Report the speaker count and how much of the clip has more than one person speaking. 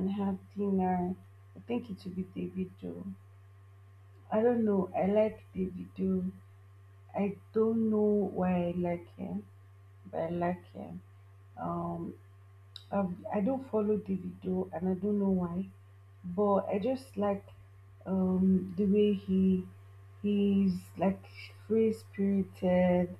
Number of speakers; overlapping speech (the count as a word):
one, no overlap